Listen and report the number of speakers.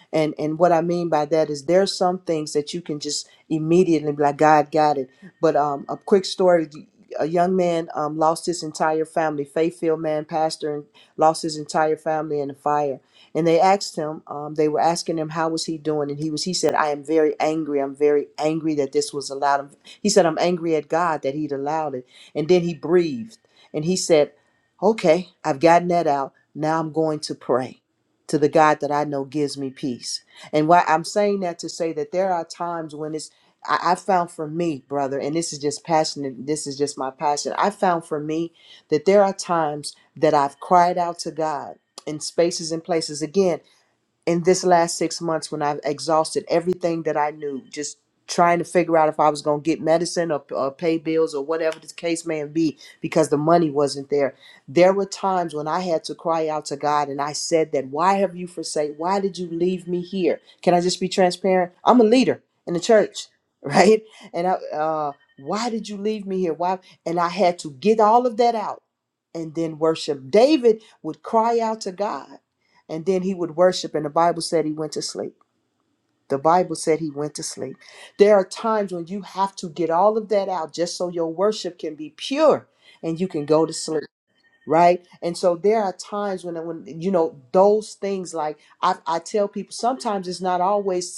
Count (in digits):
1